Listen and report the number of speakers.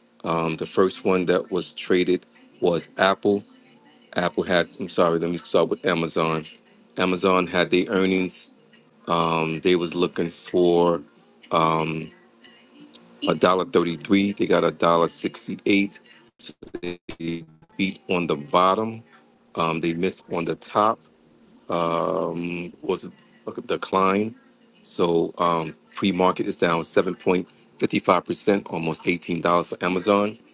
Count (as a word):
one